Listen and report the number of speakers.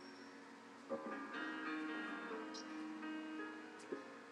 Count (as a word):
zero